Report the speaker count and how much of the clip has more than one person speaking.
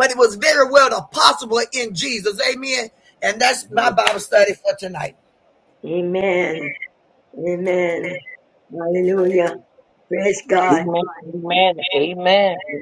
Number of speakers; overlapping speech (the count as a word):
three, about 1%